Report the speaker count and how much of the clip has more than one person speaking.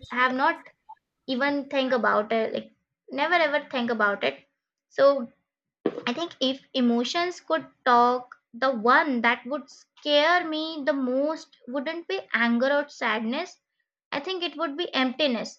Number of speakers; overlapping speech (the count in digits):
1, no overlap